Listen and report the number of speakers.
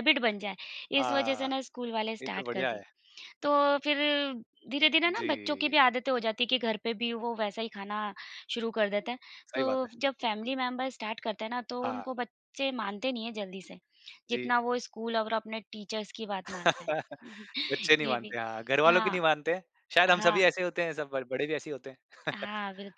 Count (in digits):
2